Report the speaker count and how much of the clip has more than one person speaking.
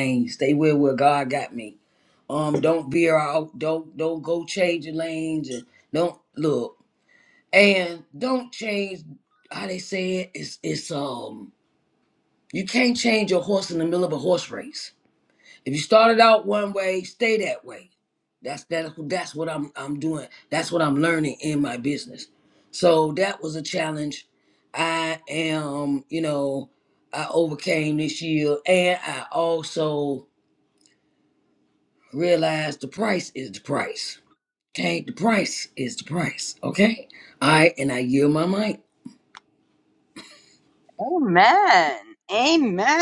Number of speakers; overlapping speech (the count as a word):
two, no overlap